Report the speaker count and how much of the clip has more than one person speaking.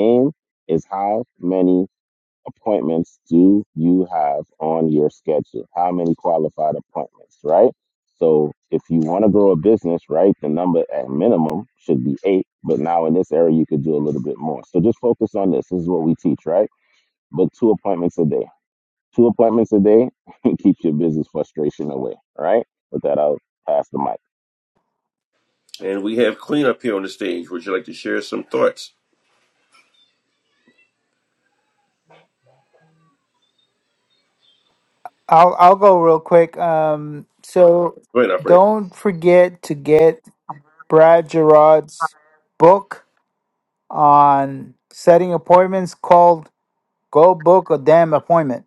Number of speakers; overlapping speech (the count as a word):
three, under 1%